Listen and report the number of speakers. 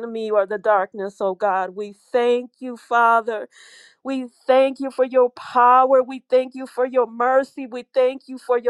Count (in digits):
1